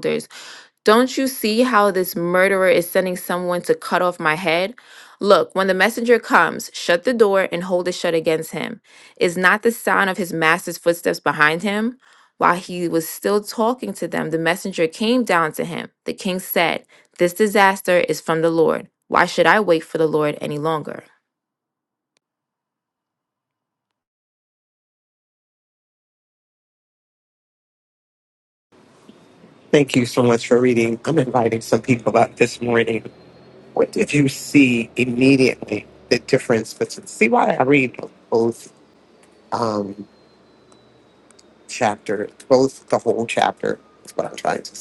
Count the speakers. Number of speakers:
two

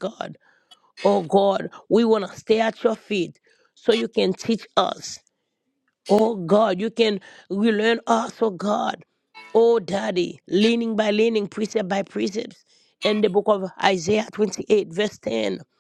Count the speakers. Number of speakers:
one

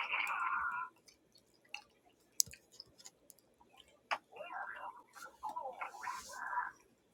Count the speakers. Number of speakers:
zero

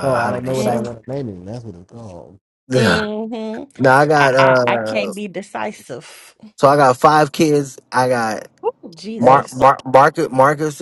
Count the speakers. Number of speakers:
three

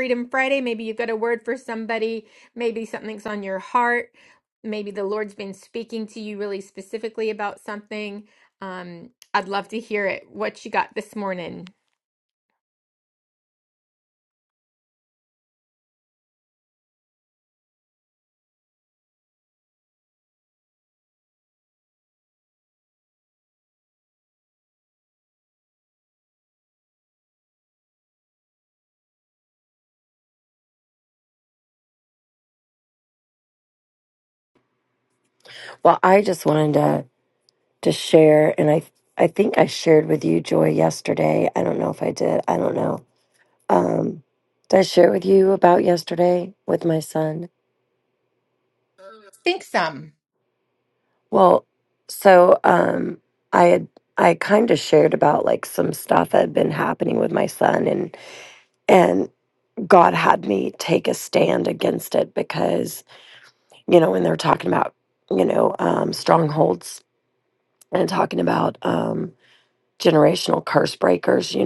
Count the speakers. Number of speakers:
two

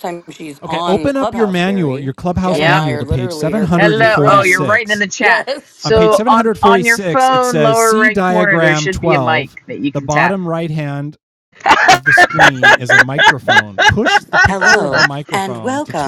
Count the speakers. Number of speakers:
three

